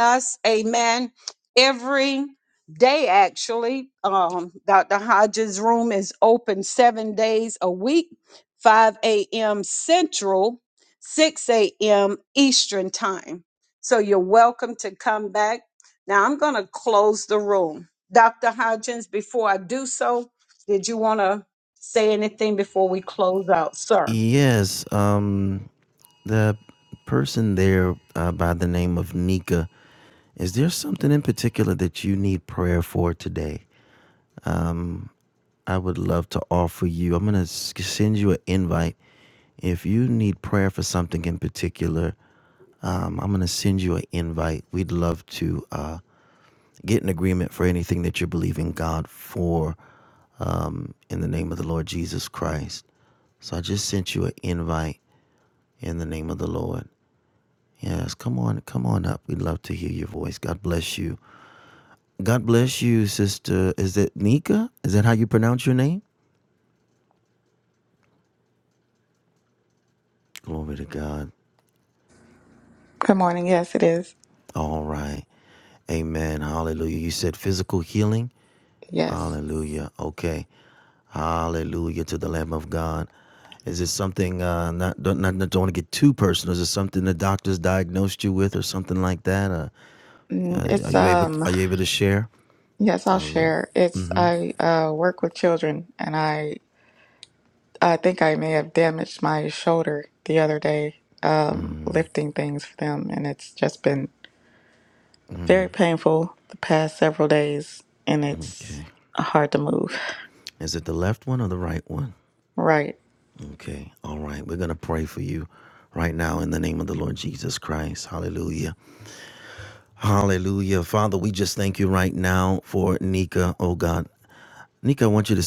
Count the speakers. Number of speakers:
three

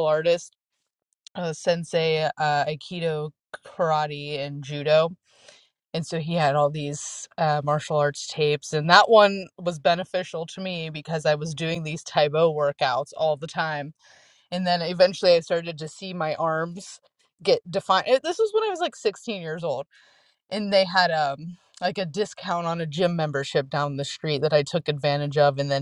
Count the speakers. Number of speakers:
one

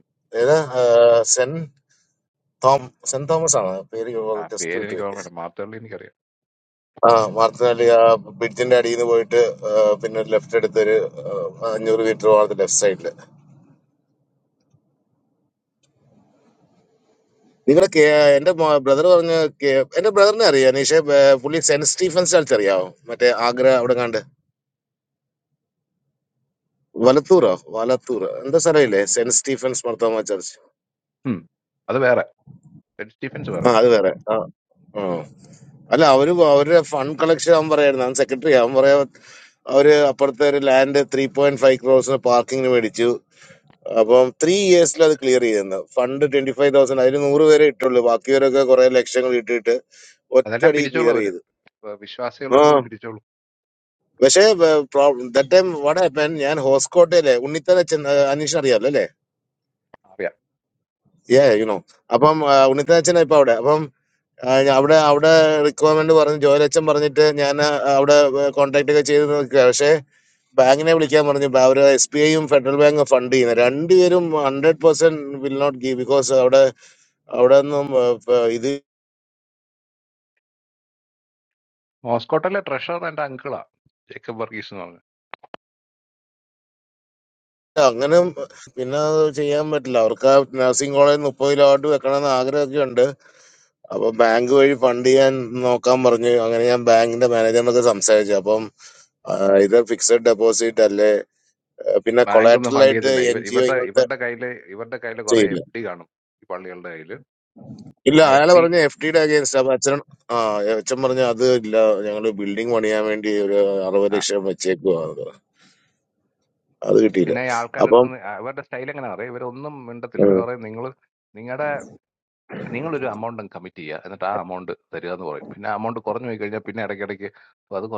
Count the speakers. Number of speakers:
two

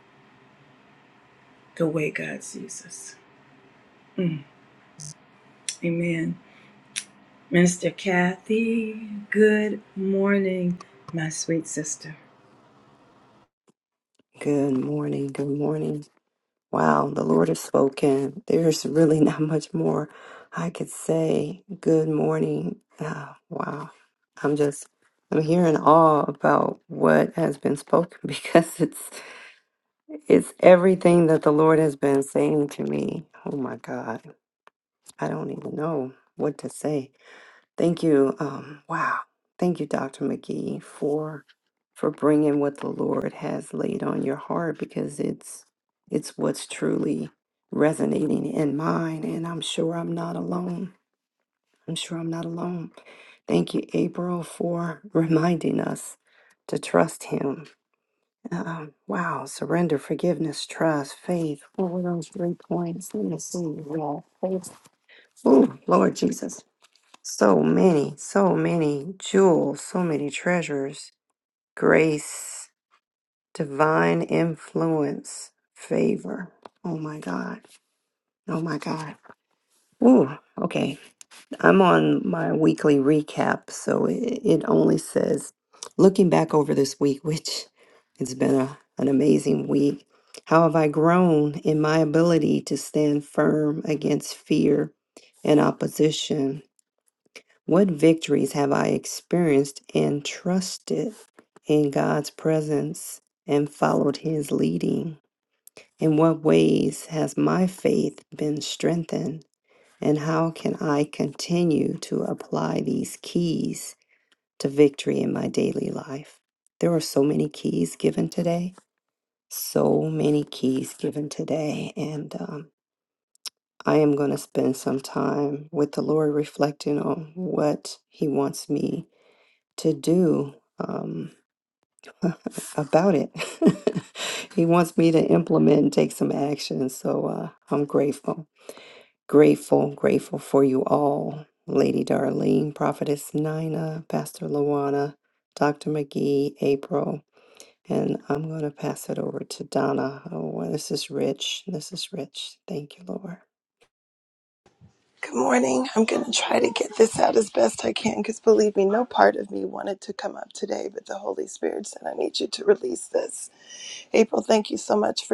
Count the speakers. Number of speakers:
three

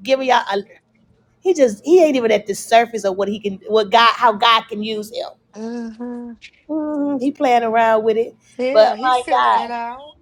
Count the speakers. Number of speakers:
two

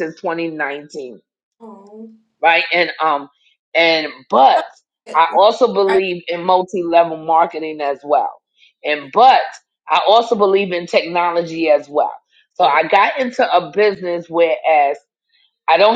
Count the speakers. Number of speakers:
two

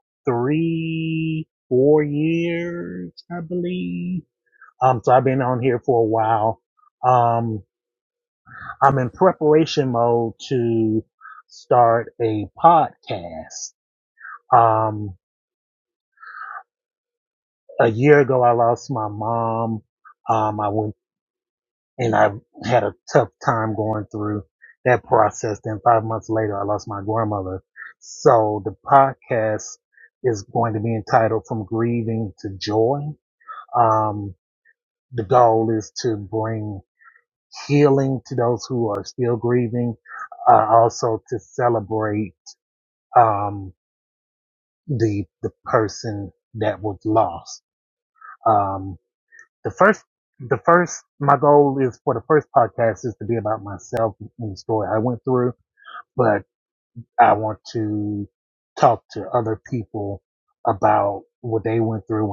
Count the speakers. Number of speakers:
one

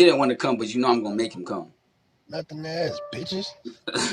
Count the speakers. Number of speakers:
two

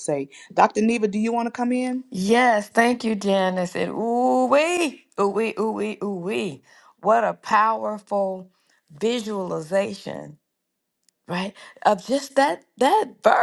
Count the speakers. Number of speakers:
two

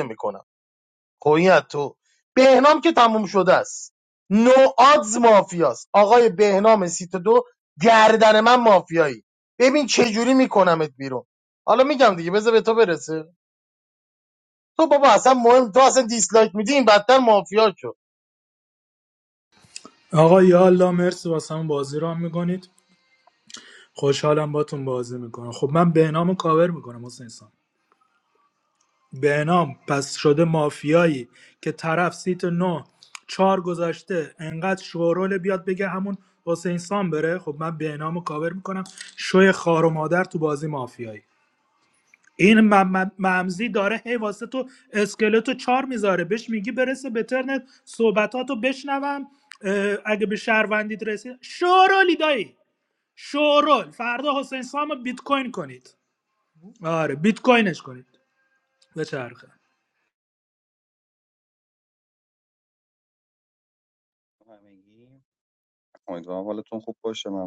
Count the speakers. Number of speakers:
three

